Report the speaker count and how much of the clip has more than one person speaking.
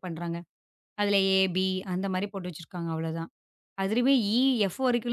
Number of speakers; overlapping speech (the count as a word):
one, no overlap